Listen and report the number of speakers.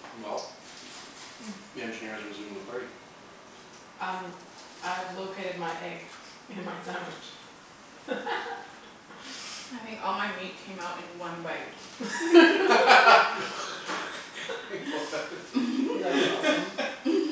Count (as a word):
three